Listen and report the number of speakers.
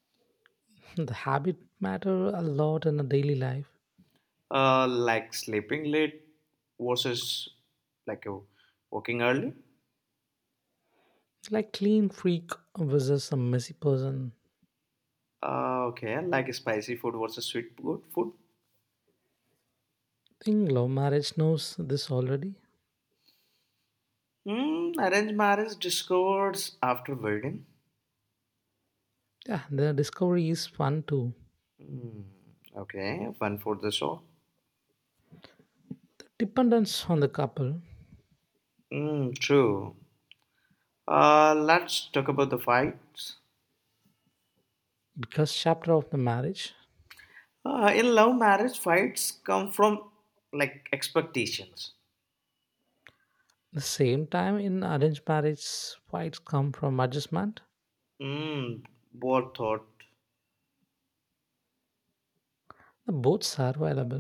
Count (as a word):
two